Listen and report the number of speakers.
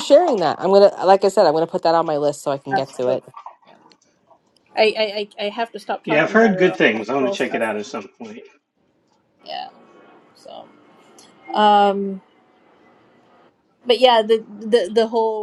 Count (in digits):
3